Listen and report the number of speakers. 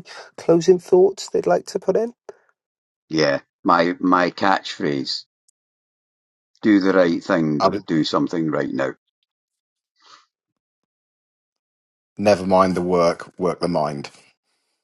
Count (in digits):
3